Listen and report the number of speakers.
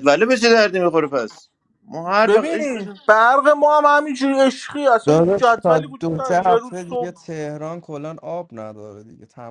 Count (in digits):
3